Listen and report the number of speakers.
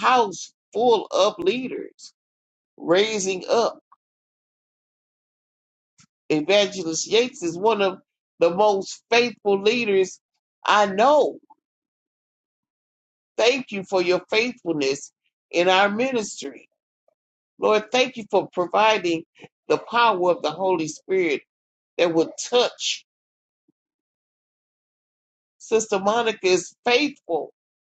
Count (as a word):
one